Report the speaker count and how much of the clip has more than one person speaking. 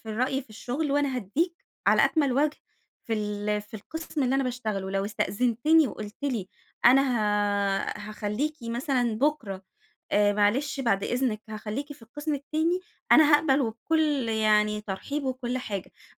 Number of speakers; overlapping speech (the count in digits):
1, no overlap